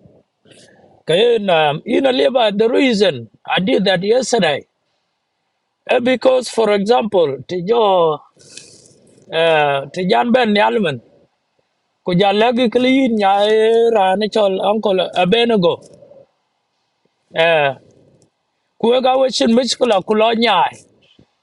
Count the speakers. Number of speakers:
one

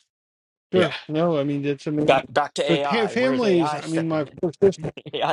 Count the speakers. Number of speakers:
two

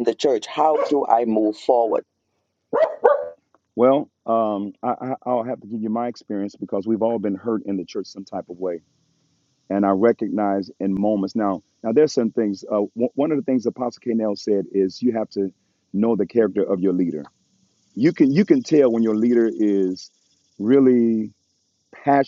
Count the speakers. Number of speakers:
two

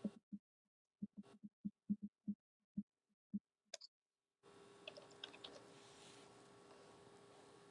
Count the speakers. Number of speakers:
zero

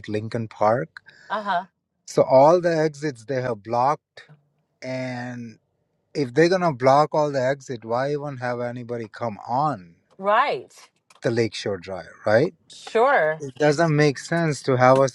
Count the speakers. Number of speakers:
two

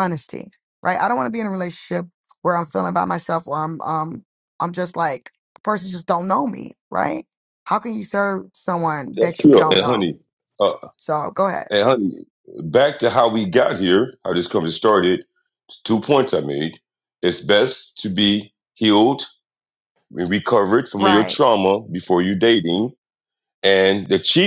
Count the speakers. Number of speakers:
two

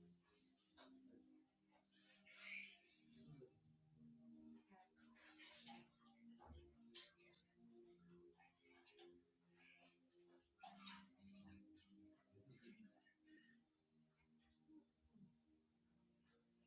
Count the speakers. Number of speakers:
zero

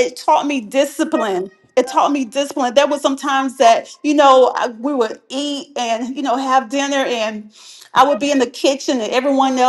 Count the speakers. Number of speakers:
one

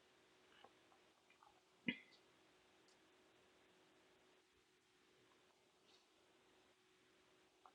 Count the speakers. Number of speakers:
zero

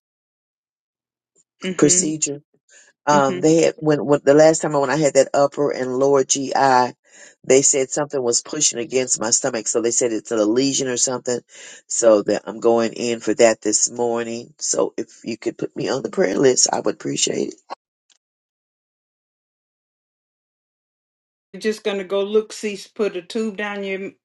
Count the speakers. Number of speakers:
two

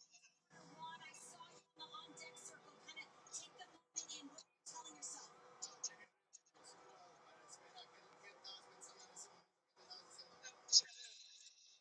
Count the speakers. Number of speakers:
zero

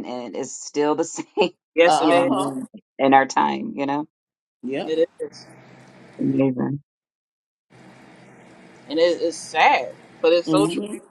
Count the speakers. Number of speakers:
three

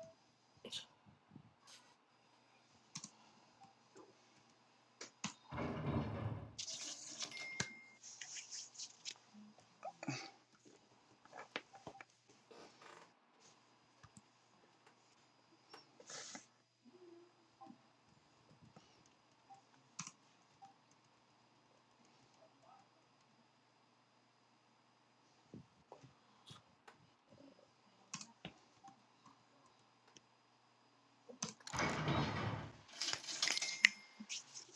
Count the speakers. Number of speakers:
zero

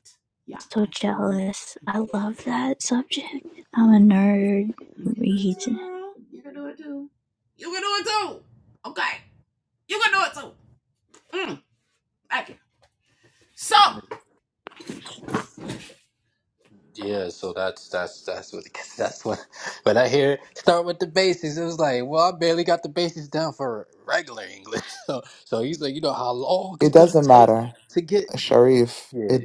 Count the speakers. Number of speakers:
four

